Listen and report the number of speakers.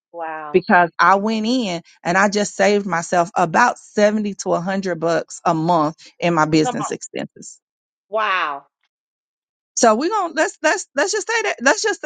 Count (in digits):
2